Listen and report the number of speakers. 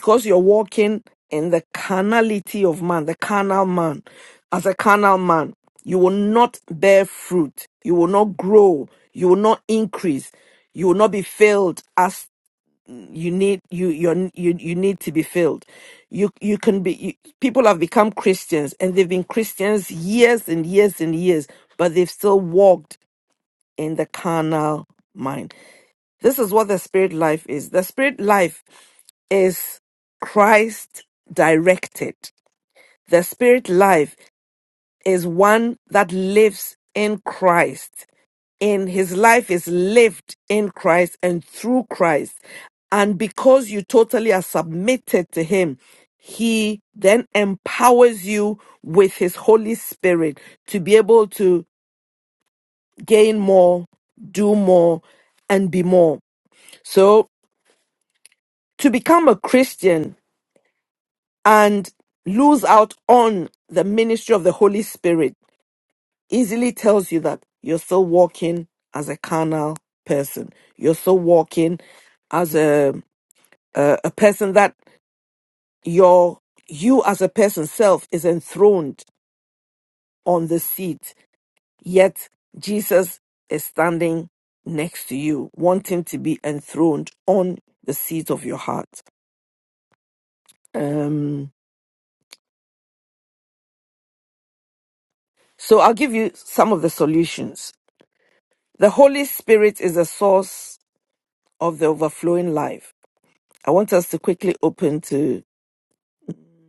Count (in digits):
1